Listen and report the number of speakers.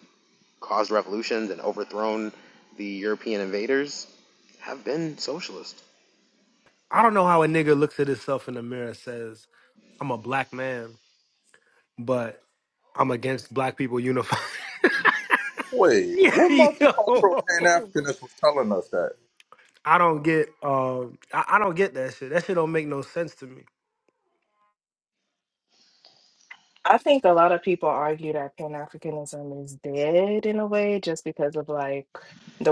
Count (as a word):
four